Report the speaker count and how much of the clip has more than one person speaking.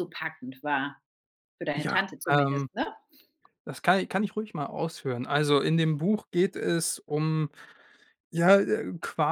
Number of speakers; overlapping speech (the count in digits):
2, about 10%